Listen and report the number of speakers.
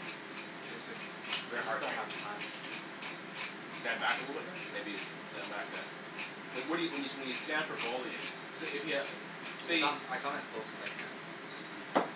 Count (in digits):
2